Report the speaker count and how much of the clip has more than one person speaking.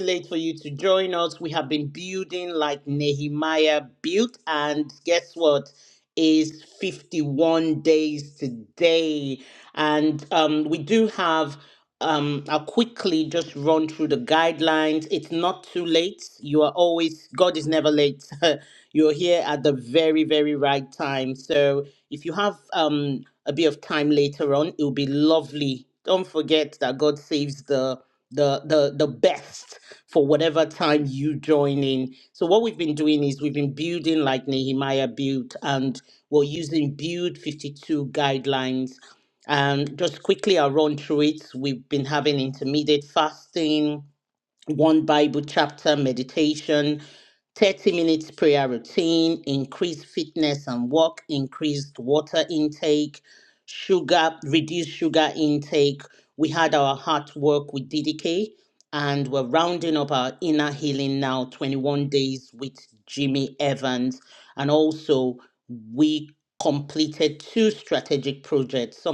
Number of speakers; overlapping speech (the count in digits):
1, no overlap